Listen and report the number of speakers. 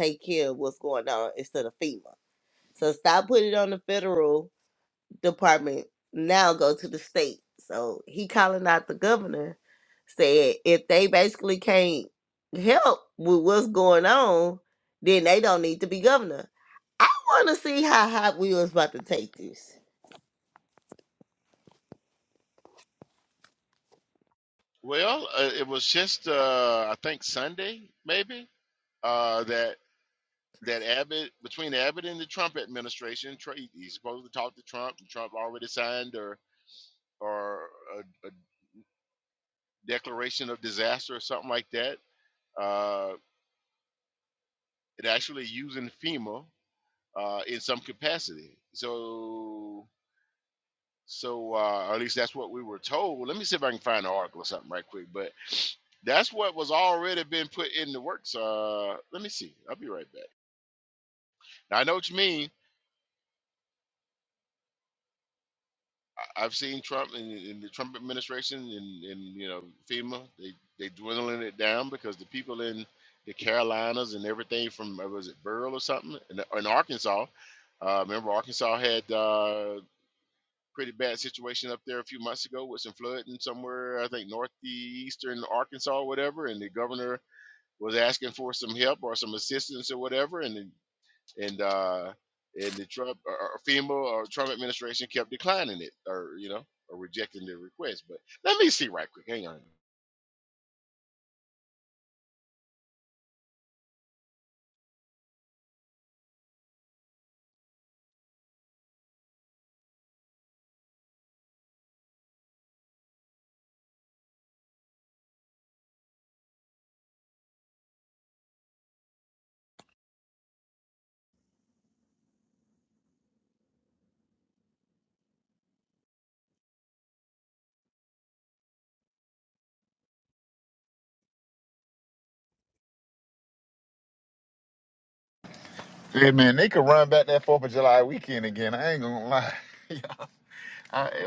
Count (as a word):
three